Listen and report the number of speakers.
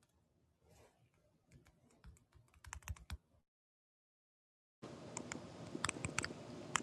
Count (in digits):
0